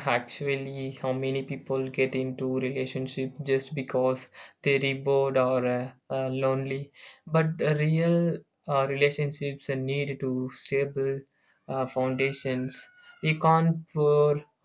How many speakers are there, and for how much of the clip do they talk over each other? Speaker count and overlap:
1, no overlap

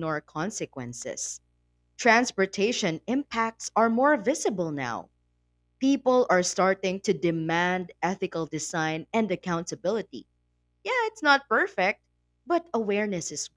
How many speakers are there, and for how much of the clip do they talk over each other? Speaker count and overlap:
1, no overlap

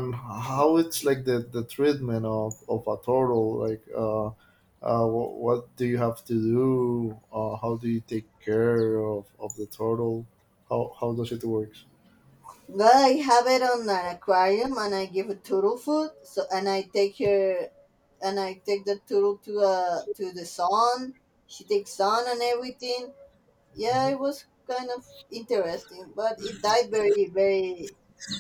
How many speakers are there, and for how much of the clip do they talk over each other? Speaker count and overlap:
2, under 1%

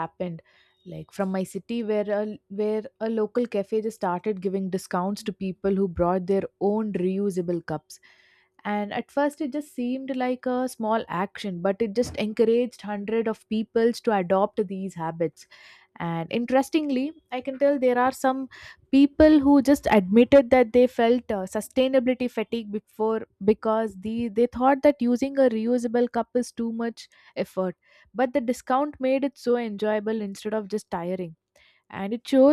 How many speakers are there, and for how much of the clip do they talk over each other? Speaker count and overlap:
1, no overlap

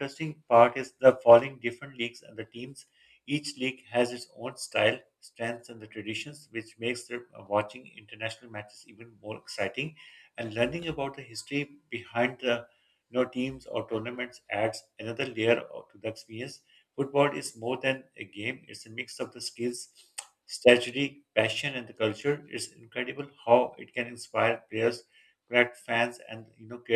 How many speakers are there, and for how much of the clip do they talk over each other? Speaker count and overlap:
1, no overlap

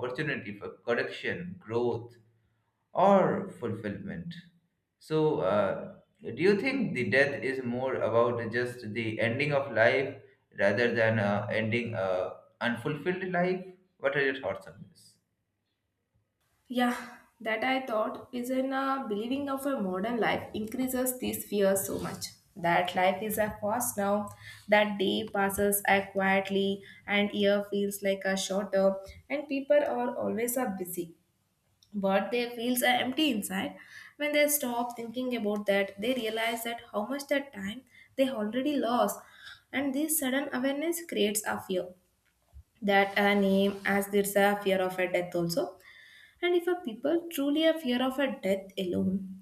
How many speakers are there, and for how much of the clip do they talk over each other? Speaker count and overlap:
2, no overlap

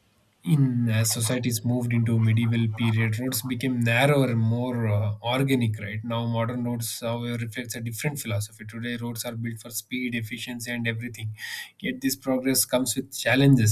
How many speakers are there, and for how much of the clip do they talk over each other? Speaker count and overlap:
1, no overlap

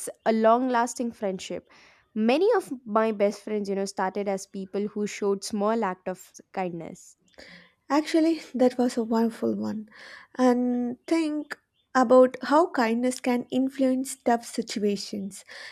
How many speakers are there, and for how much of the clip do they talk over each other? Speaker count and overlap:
2, no overlap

